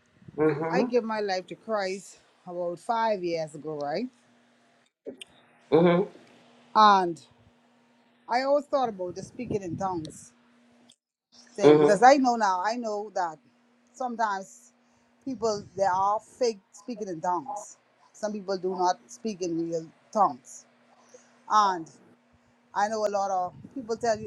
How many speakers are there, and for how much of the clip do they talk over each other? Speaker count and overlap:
two, about 2%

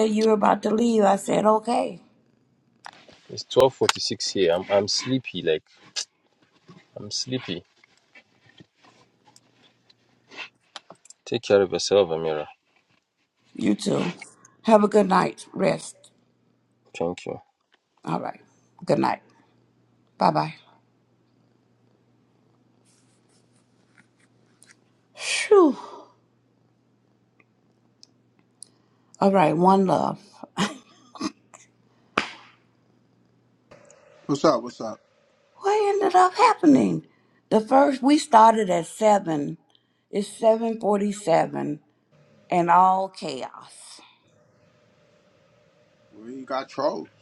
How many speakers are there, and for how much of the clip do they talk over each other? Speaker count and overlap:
three, no overlap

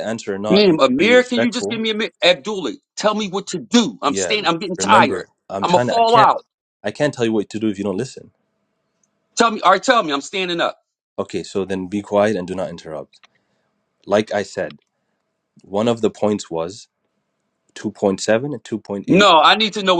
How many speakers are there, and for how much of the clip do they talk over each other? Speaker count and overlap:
two, about 15%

